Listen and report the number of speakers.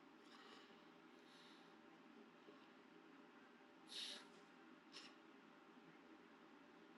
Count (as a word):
zero